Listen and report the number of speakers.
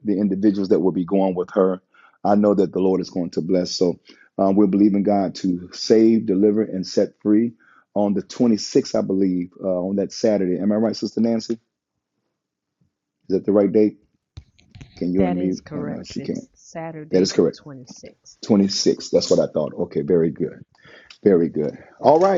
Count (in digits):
2